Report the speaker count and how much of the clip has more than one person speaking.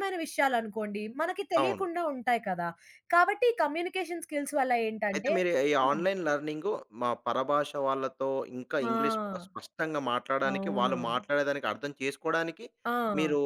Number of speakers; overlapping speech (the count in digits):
2, about 11%